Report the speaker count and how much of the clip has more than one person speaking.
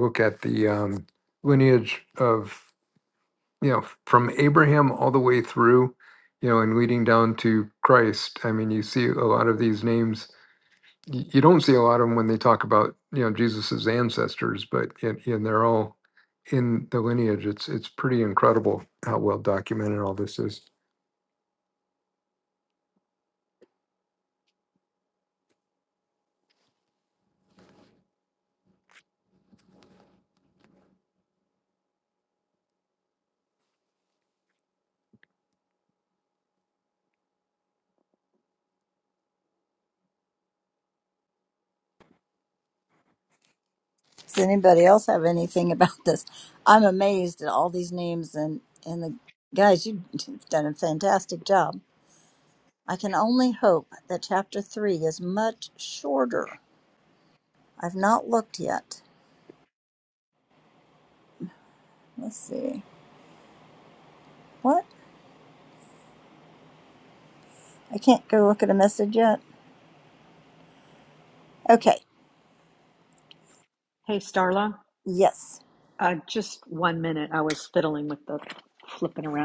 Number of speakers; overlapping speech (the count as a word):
three, no overlap